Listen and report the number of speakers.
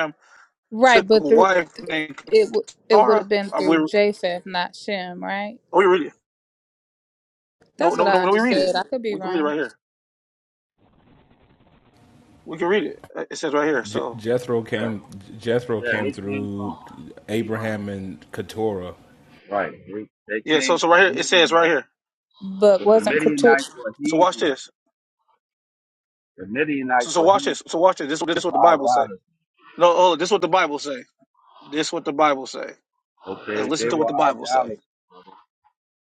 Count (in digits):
4